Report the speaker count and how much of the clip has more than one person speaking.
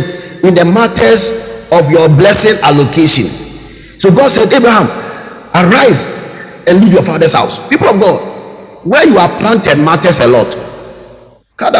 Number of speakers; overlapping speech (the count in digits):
1, no overlap